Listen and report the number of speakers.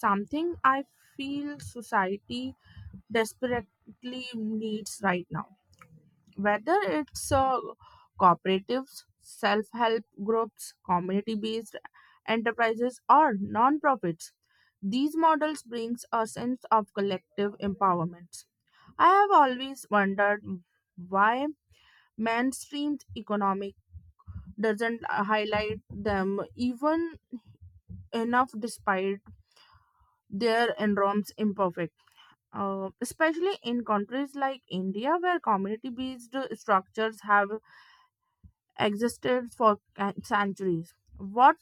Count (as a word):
one